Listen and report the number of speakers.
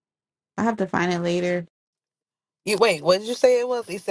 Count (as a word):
two